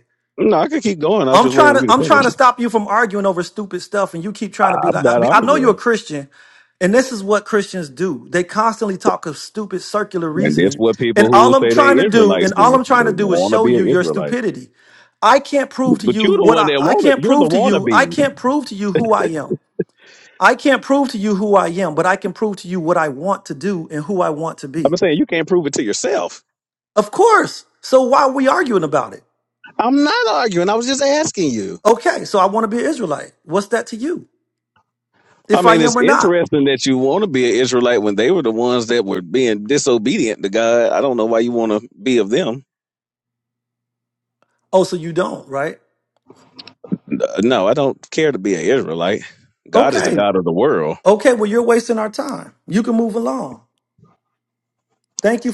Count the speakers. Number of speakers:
2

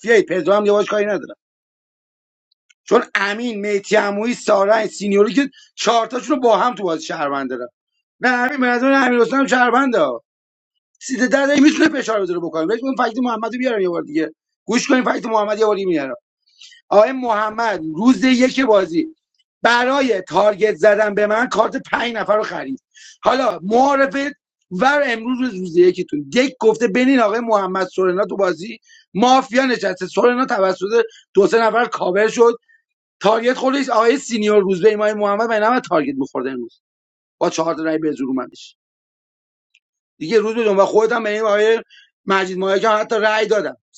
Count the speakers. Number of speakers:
1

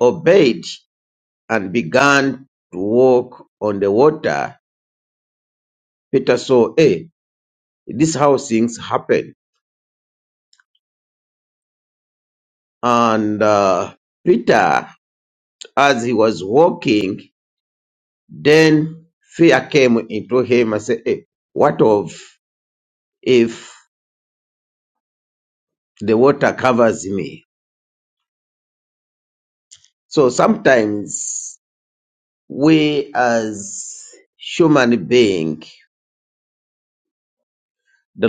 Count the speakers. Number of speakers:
1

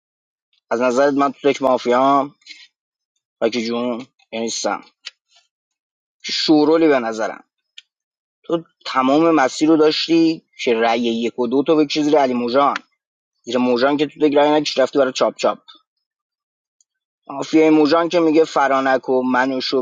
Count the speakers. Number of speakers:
1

